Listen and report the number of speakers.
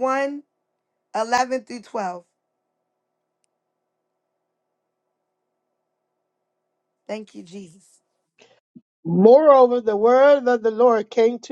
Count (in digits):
2